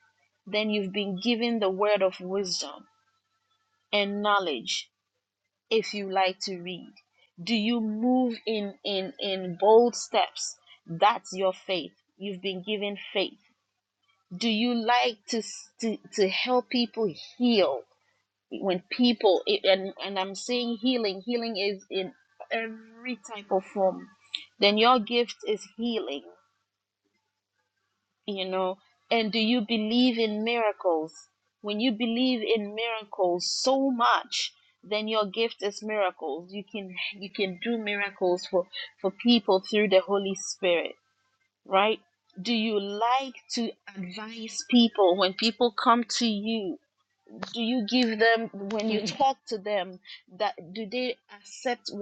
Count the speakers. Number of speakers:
1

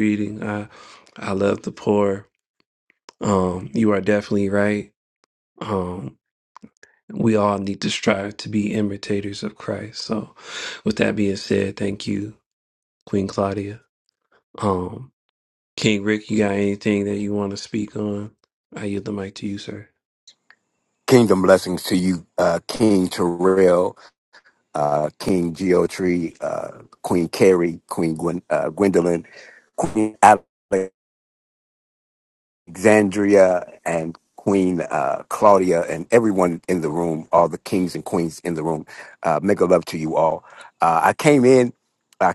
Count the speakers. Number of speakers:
2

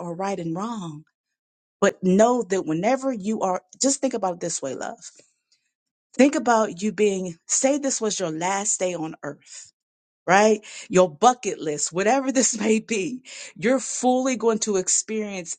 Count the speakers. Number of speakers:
1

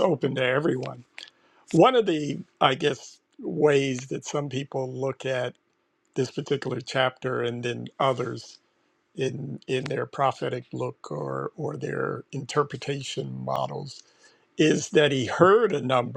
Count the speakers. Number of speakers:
1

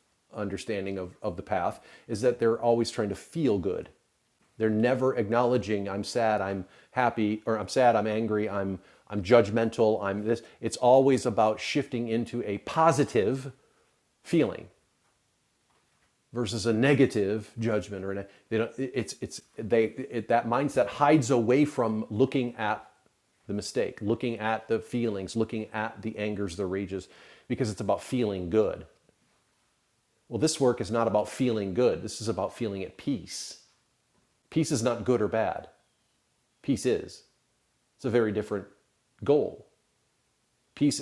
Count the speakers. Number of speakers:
1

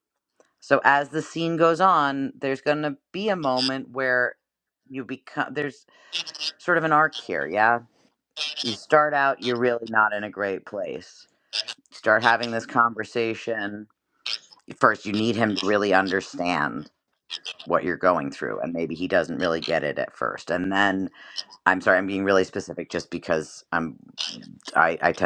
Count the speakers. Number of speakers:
1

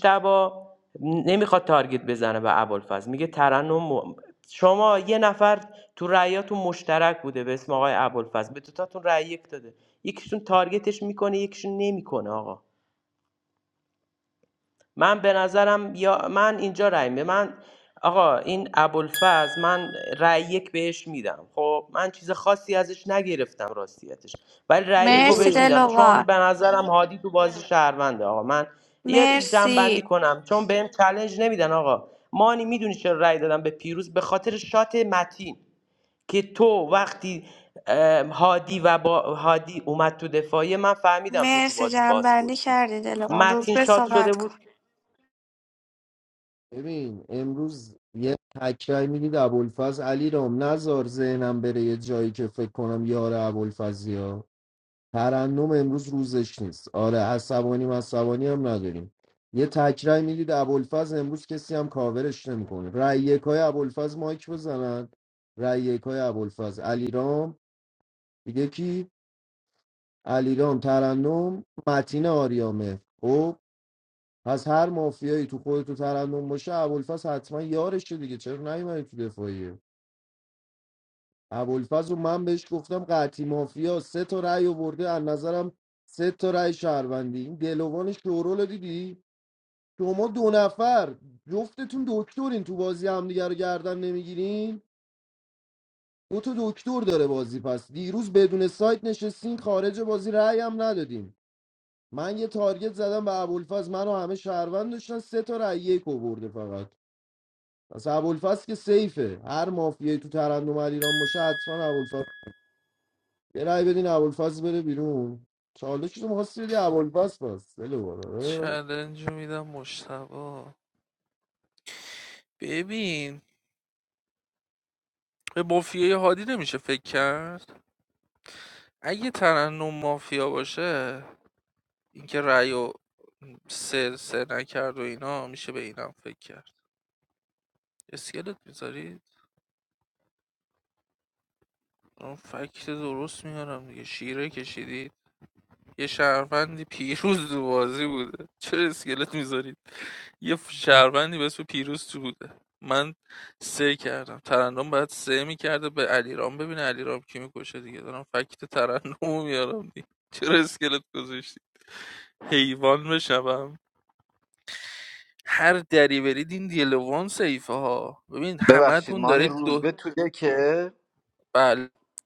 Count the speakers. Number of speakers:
5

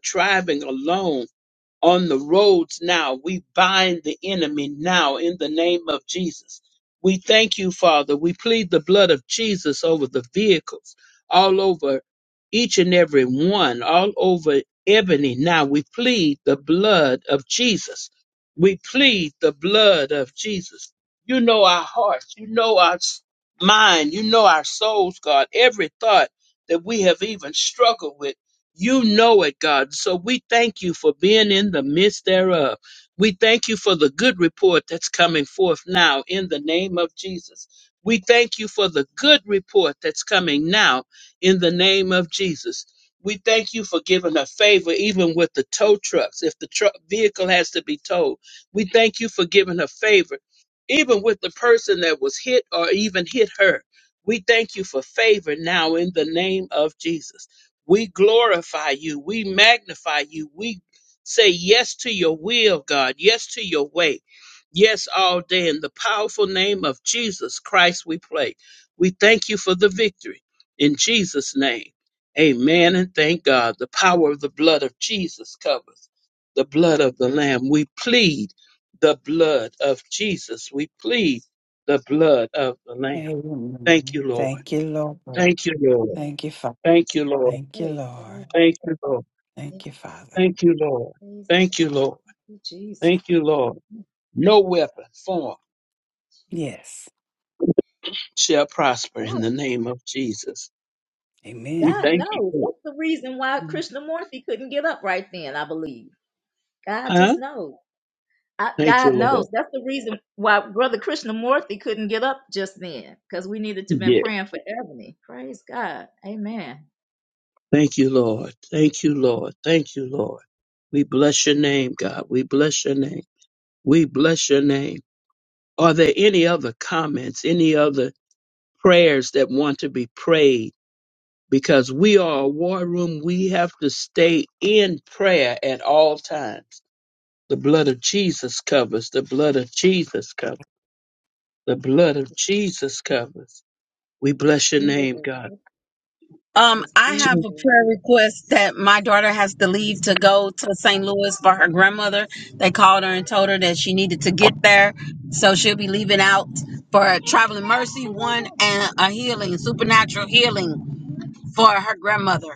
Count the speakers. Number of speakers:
4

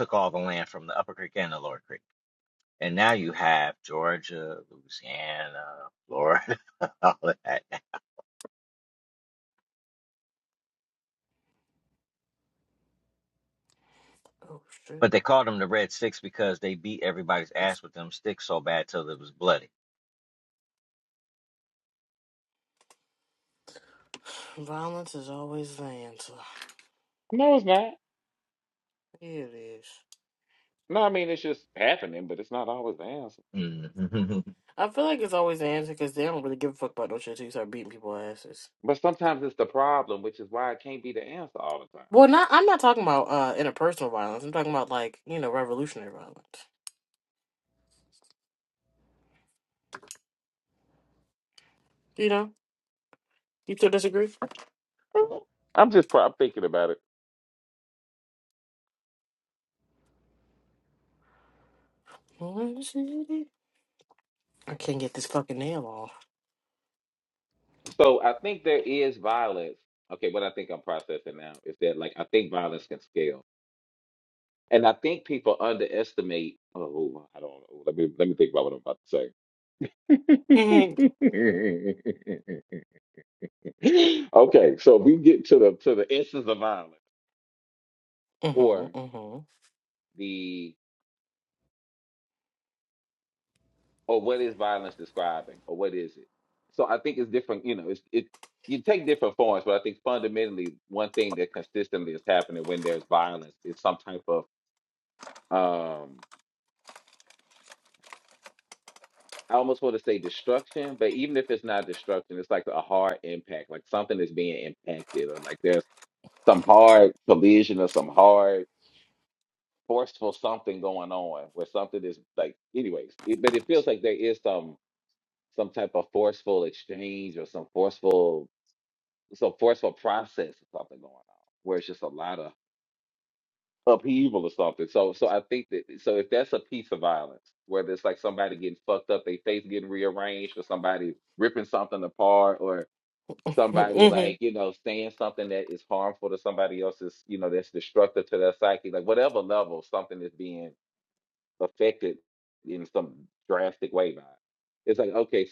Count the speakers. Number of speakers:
3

